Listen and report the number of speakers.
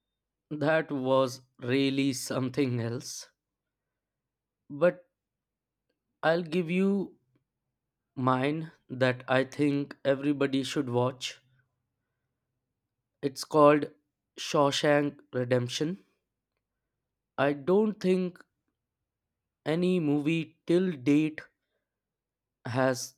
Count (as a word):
one